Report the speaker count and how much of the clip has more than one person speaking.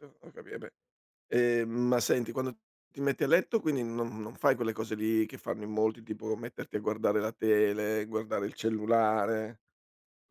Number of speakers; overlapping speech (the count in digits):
1, no overlap